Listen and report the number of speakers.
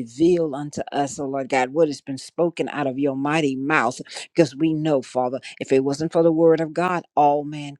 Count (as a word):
one